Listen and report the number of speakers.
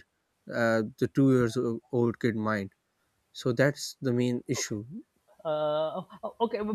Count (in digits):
2